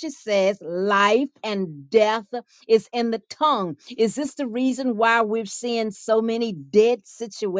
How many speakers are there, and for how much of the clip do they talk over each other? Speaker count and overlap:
1, no overlap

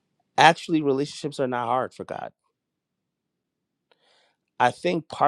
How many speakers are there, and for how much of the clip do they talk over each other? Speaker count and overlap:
1, no overlap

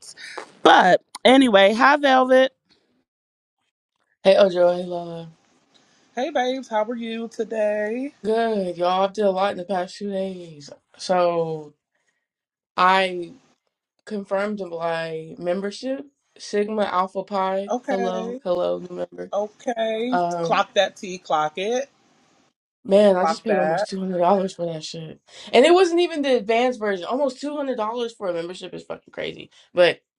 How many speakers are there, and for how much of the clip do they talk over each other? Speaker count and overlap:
3, about 6%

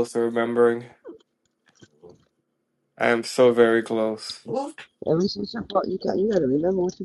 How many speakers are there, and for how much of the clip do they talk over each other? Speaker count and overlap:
2, no overlap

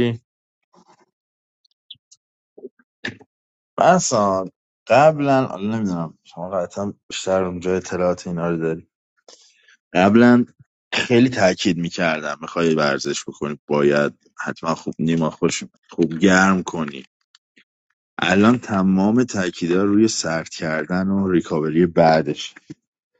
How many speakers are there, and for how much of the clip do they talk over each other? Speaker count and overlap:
1, no overlap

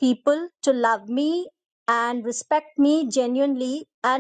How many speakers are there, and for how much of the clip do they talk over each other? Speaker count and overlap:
1, no overlap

